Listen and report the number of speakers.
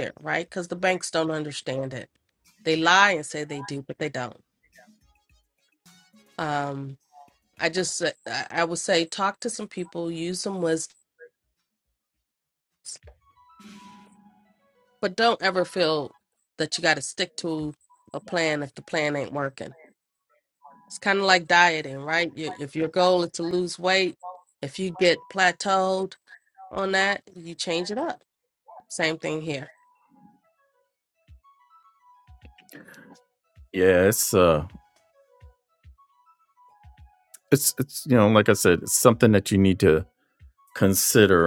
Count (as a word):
two